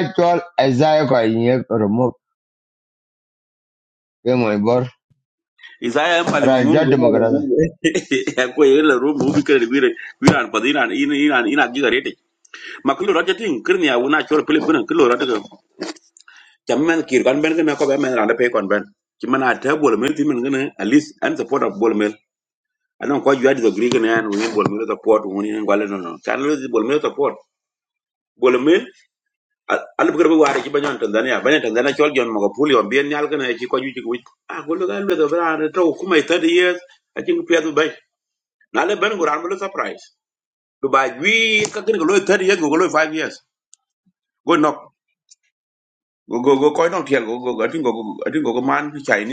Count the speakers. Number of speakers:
2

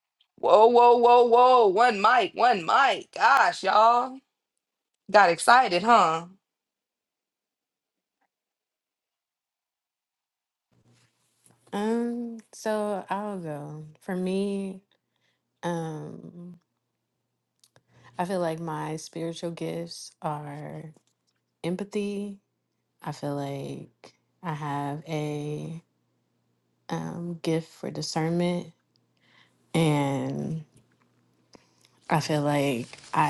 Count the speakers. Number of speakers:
2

